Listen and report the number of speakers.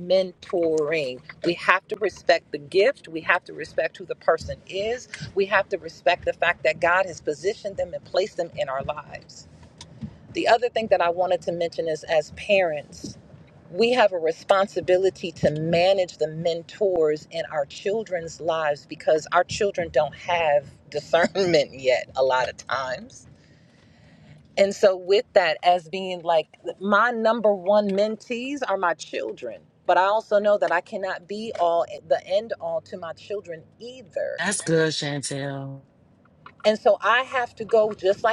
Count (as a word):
two